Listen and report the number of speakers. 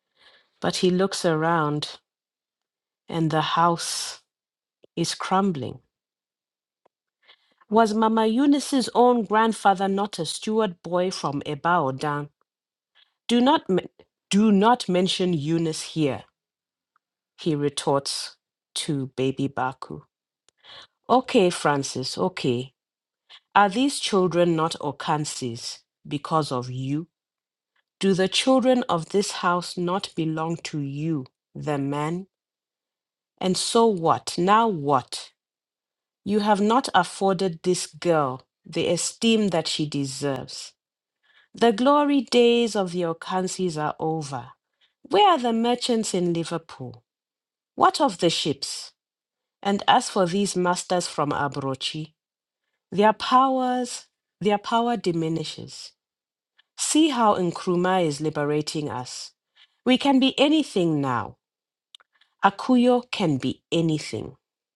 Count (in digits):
1